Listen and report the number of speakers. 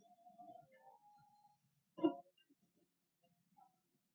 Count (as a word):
zero